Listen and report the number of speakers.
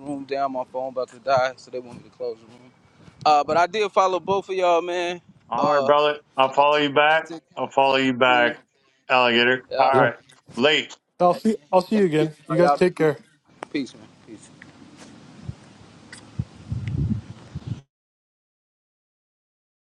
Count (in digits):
3